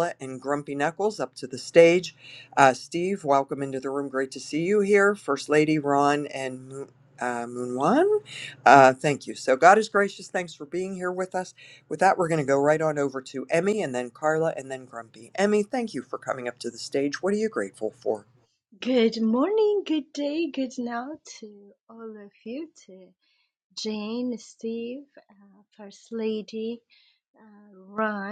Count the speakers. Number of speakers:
2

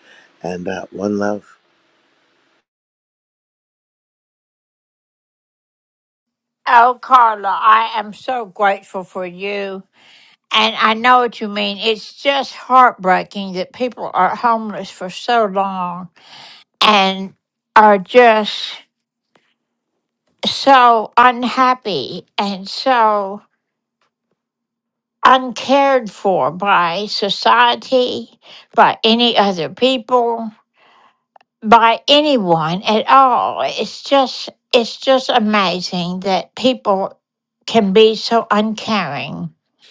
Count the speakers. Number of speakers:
2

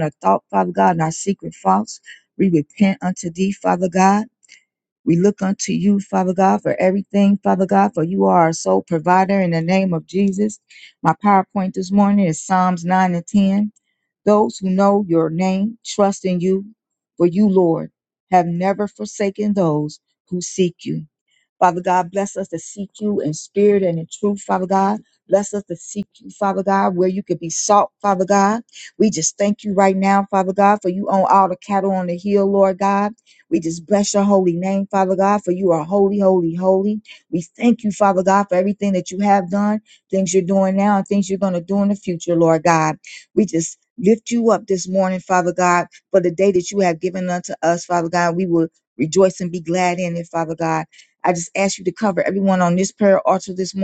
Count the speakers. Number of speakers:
1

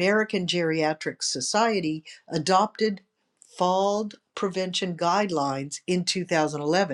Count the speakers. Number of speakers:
1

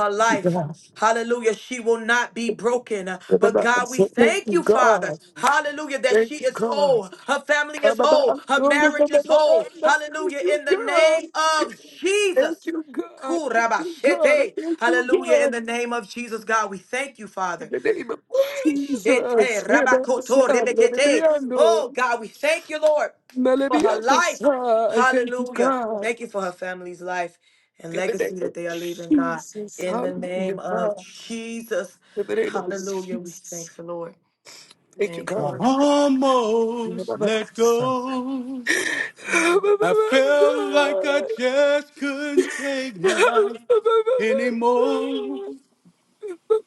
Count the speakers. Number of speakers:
3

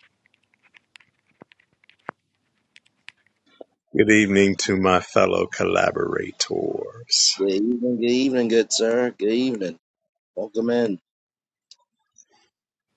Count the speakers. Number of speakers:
2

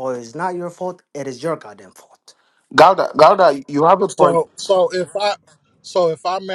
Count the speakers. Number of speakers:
3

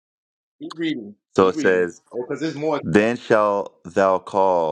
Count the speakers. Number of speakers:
2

